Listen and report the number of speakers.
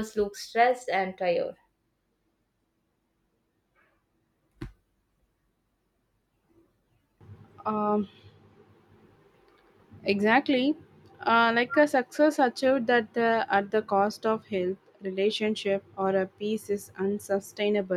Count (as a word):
two